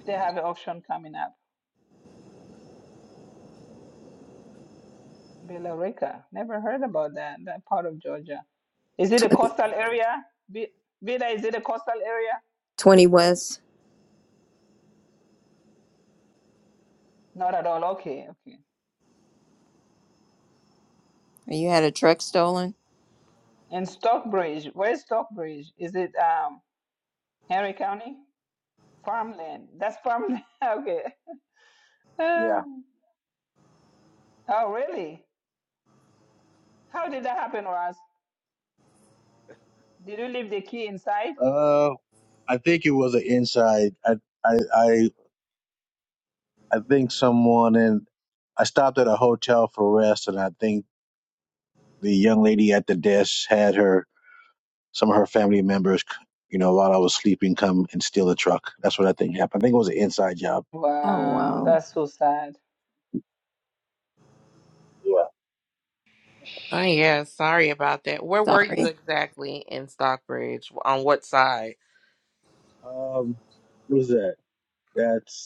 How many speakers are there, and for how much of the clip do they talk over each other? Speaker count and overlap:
four, about 2%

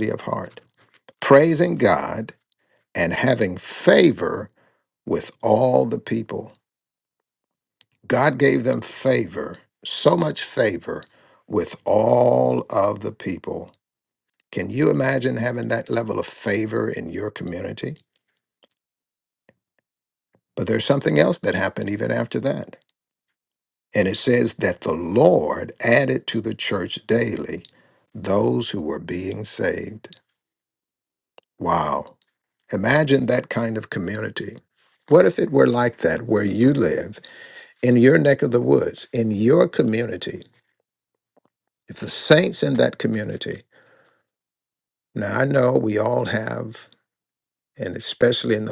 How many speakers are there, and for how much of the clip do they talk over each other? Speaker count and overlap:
one, no overlap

